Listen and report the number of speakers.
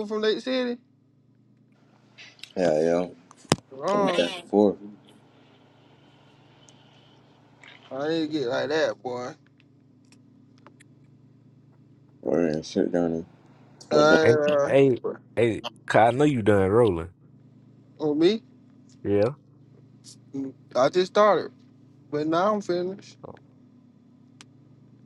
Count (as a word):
three